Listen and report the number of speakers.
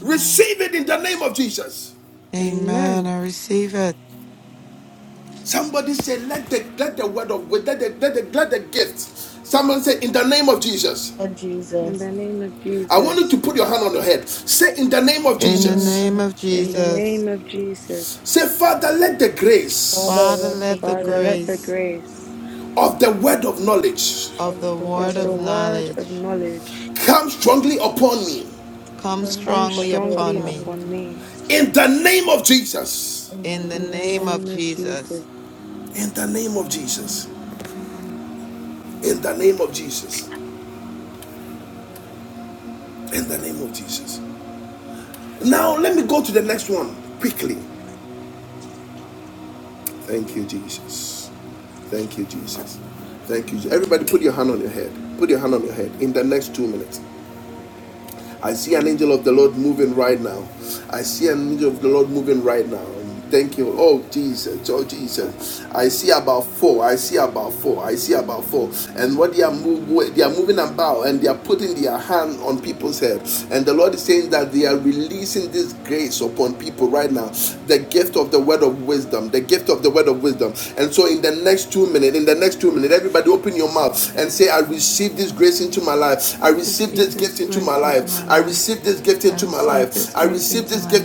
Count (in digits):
4